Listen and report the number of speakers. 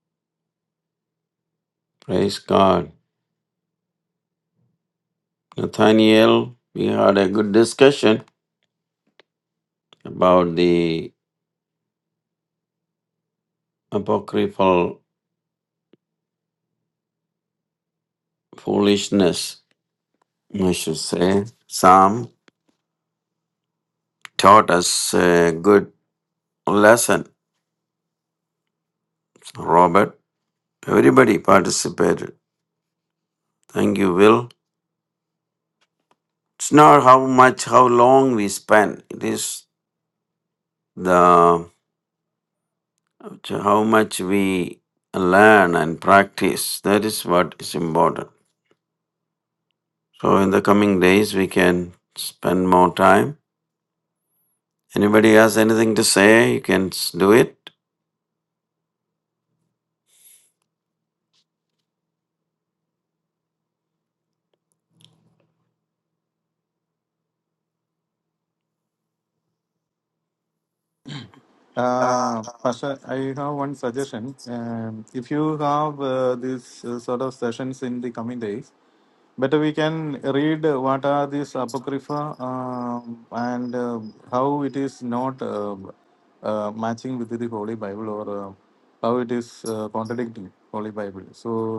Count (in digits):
2